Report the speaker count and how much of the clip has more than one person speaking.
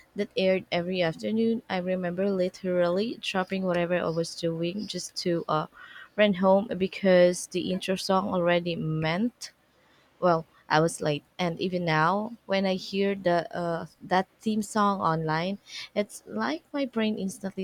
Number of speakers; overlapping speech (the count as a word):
one, no overlap